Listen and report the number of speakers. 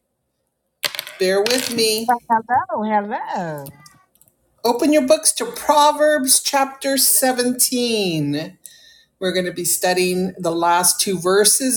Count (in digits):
2